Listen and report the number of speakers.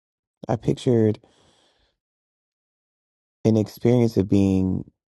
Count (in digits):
1